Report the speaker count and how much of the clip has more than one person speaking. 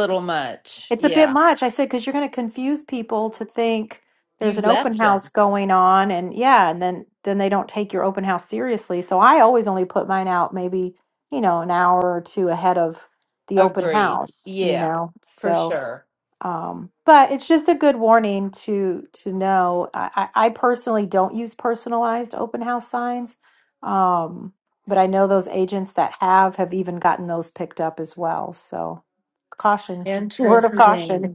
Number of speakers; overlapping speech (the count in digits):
2, about 11%